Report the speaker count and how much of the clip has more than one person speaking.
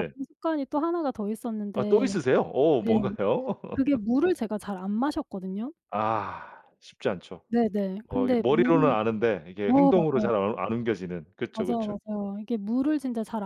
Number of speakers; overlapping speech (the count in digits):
2, about 18%